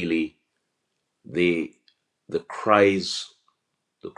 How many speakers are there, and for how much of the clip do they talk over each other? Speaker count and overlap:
one, no overlap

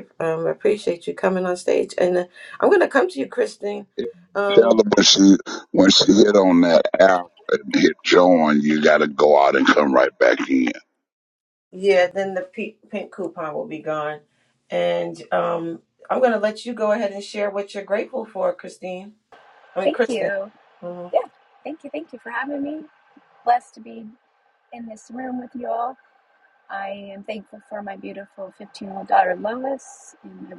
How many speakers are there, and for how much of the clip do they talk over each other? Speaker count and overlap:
three, about 2%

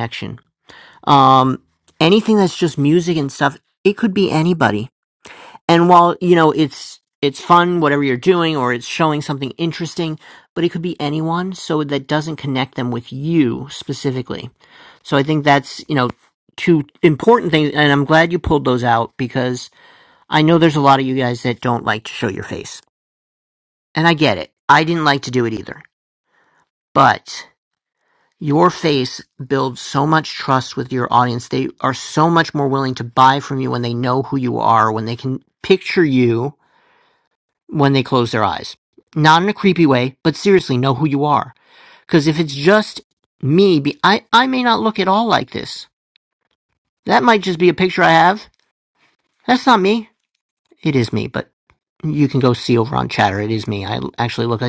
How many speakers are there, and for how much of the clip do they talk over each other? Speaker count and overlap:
one, no overlap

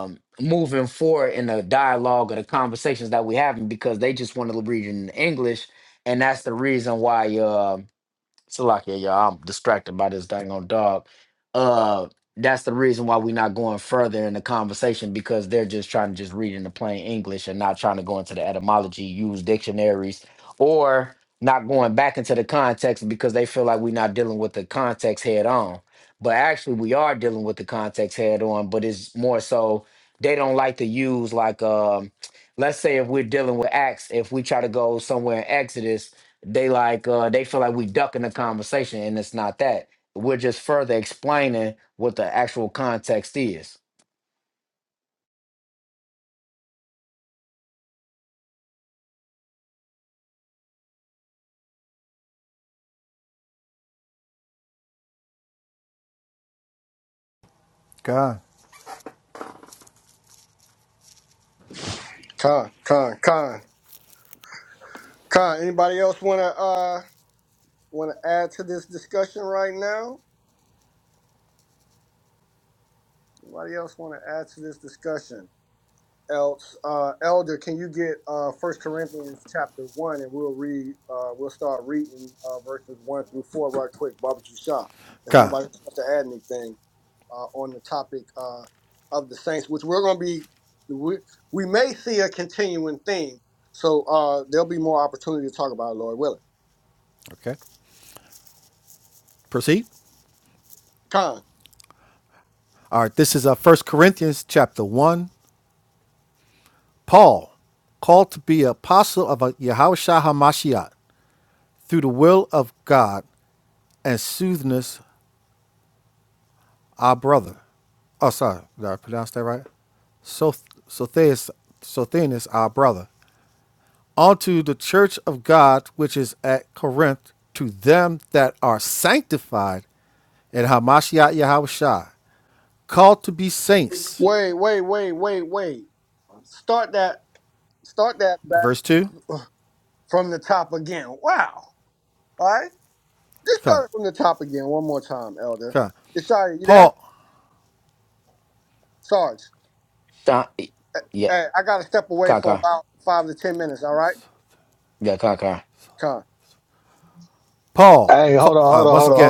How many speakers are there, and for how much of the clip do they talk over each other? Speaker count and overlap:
four, about 1%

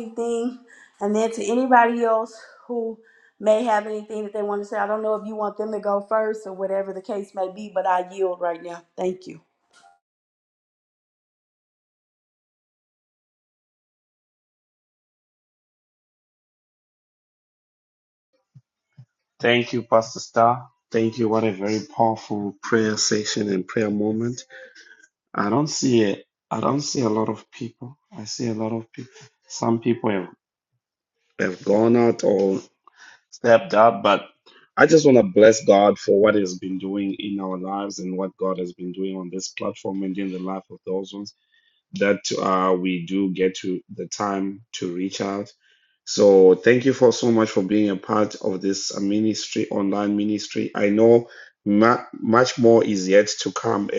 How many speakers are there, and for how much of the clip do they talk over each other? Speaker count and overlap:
two, no overlap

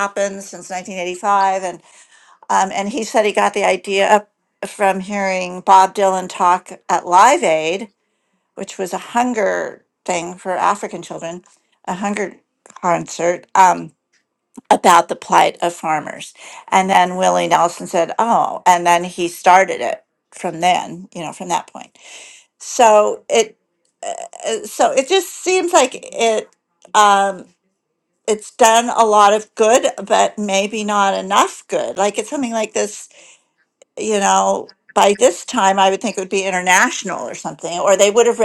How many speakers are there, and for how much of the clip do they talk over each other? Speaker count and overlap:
one, no overlap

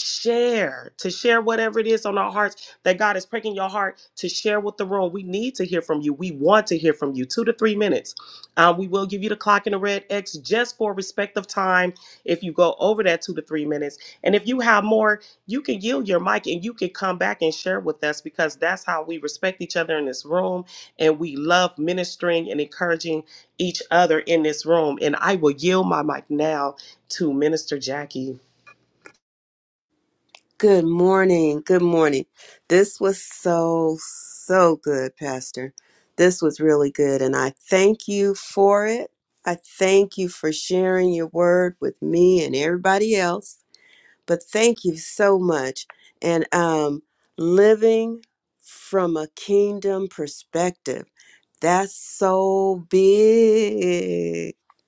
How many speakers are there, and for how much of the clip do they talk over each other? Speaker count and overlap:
two, no overlap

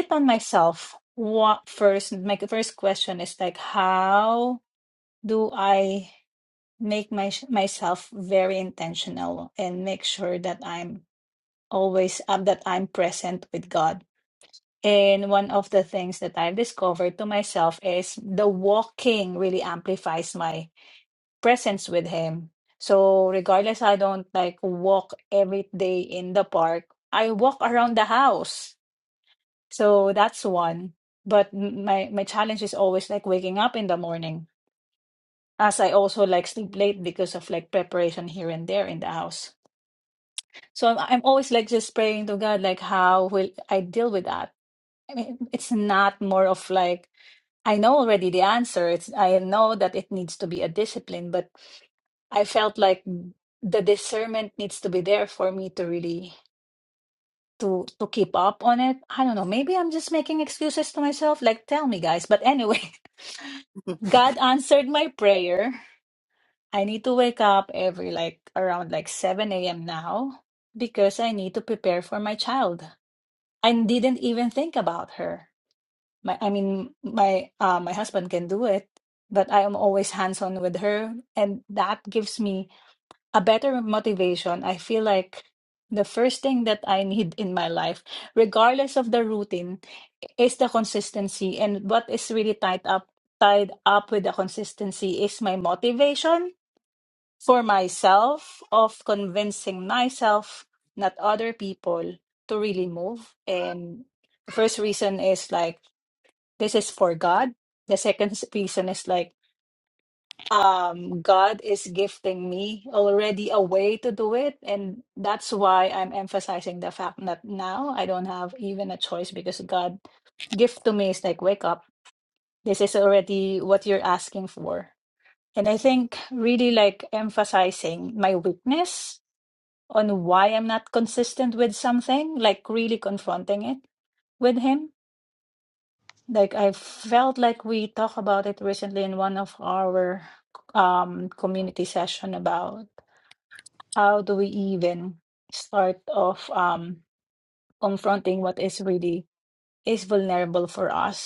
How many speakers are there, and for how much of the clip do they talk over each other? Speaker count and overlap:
one, no overlap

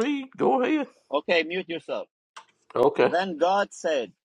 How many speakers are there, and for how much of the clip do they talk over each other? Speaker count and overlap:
two, about 3%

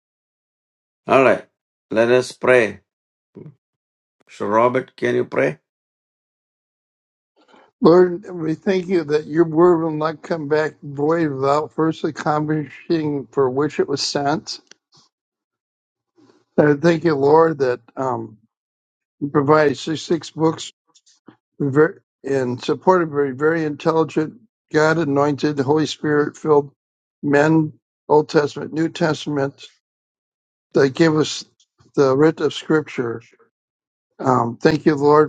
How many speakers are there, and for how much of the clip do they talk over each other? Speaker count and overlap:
two, no overlap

